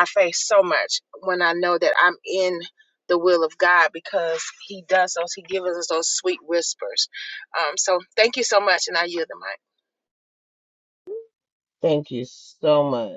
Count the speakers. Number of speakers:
2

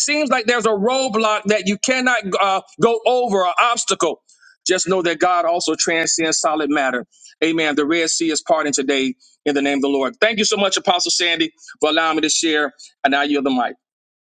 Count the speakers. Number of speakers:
1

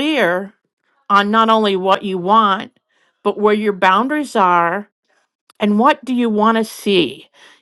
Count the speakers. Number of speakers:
1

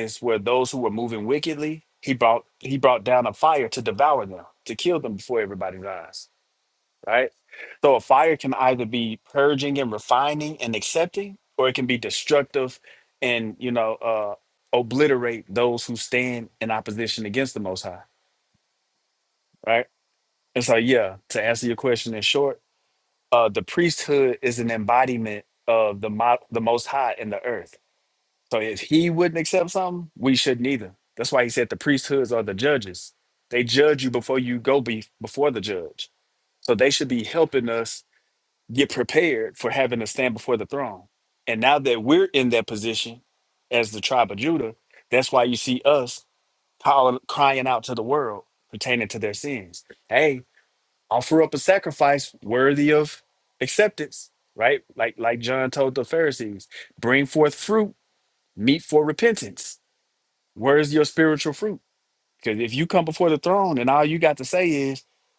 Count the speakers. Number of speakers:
1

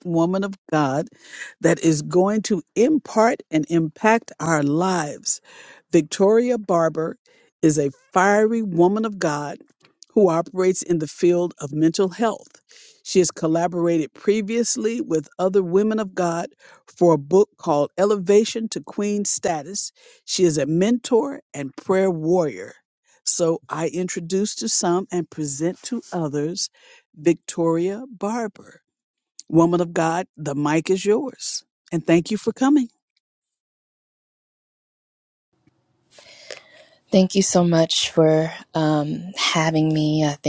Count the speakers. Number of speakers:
2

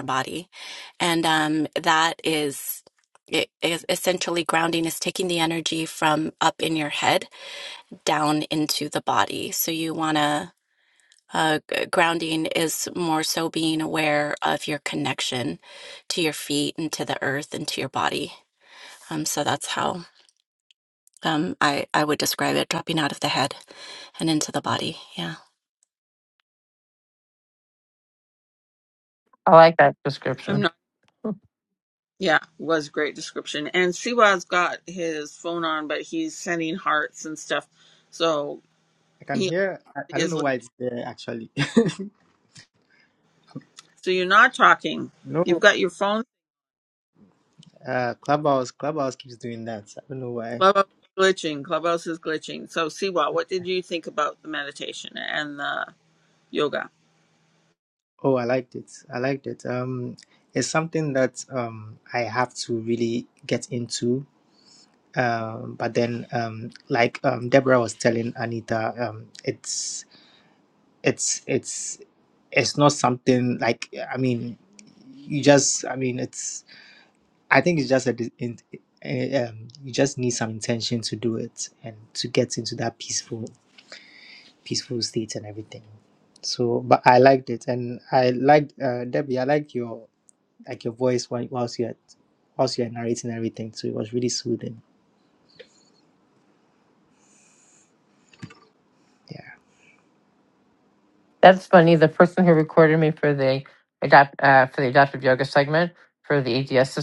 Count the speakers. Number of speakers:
4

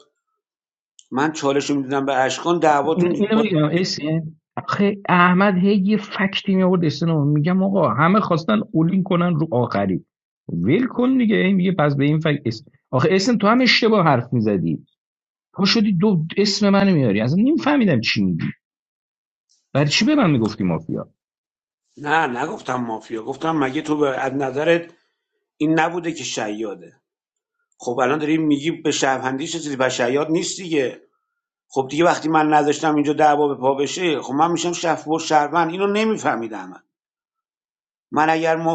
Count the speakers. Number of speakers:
2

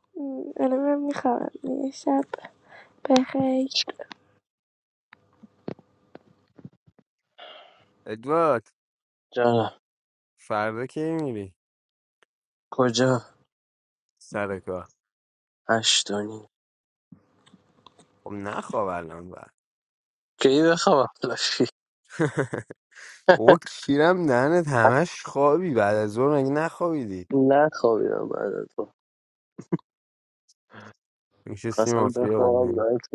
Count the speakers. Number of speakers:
3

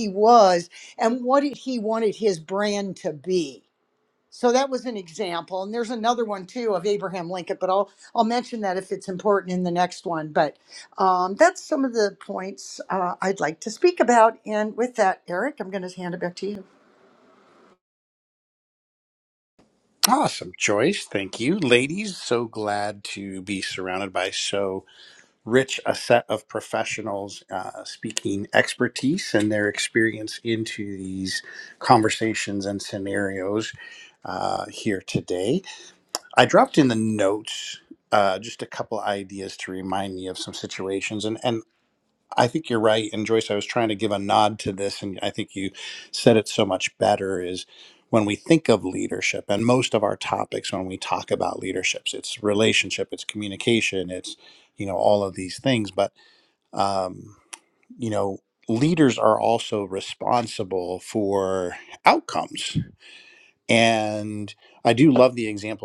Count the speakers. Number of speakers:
2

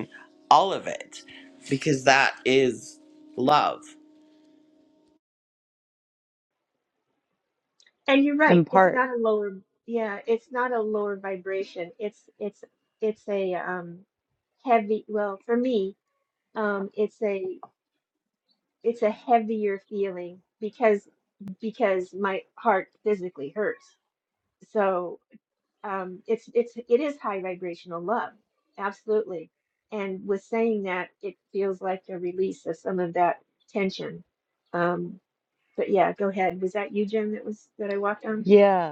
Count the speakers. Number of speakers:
3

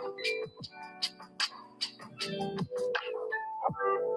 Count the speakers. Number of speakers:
0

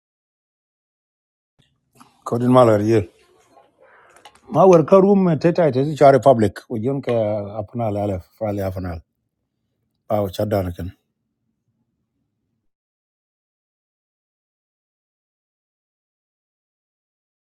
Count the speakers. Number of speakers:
1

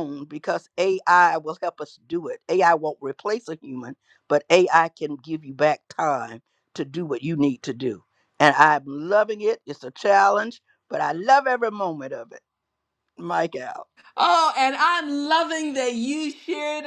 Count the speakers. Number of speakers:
2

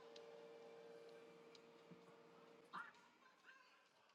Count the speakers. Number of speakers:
0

